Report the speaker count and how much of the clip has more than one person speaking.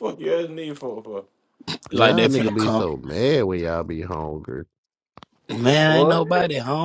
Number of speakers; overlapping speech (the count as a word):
three, about 23%